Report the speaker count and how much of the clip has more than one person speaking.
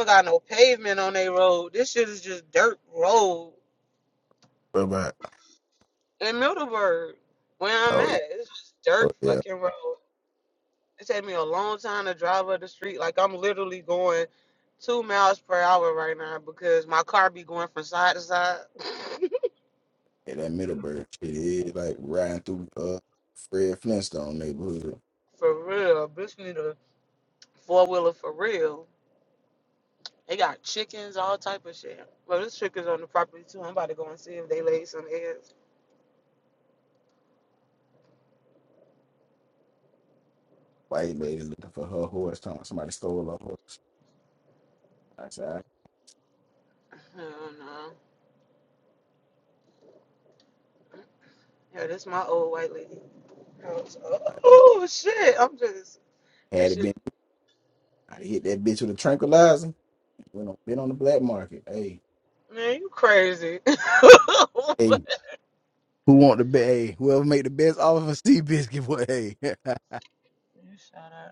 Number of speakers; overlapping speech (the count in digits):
2, about 1%